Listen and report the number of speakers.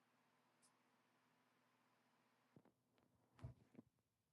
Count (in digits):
0